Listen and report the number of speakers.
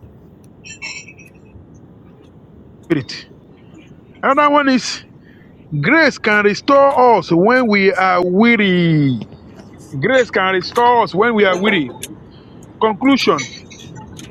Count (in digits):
1